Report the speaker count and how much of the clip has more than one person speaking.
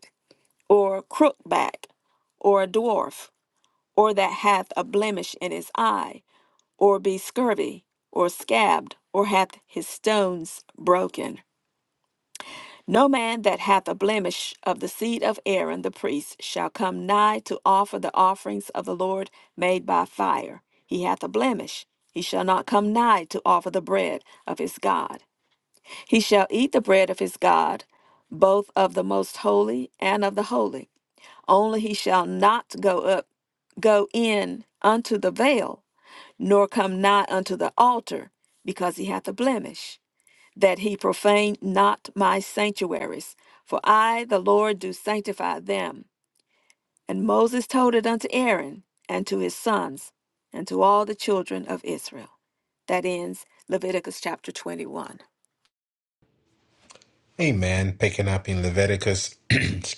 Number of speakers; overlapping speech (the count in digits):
2, no overlap